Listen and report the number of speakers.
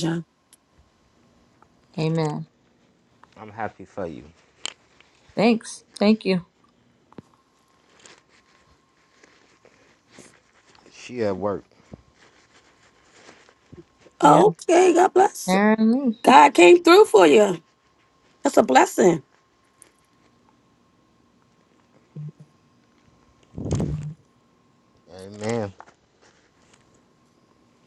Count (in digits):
3